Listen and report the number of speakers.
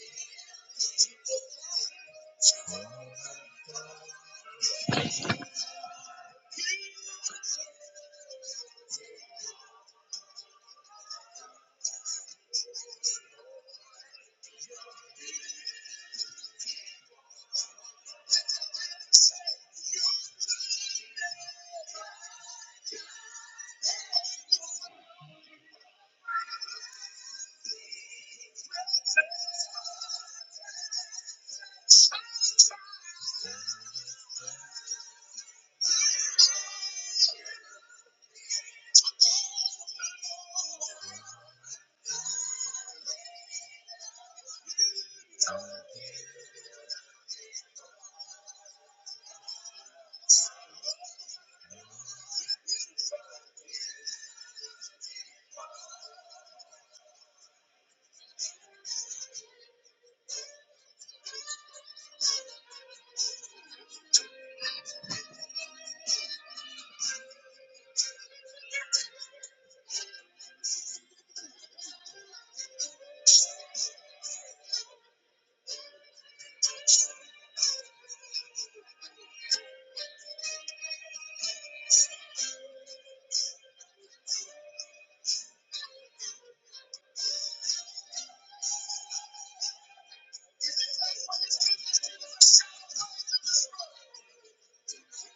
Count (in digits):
0